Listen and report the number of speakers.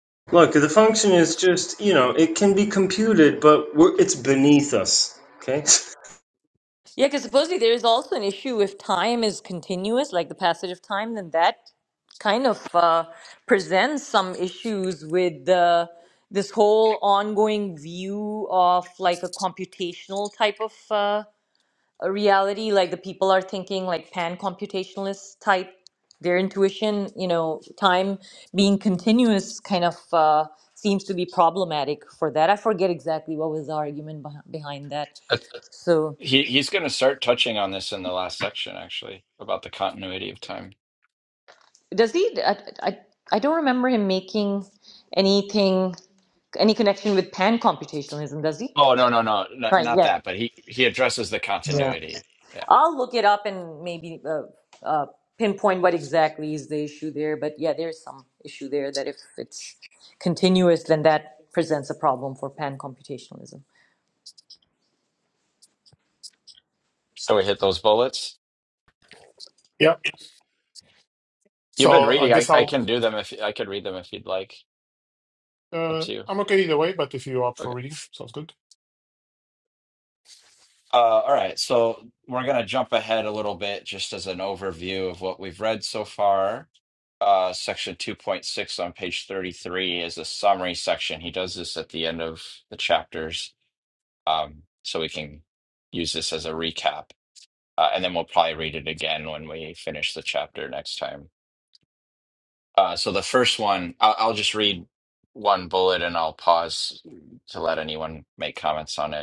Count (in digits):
4